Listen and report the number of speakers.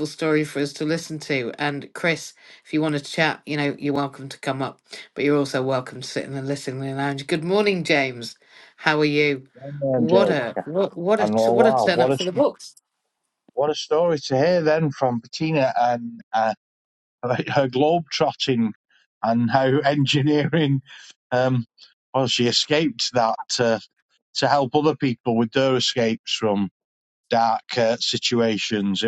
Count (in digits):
2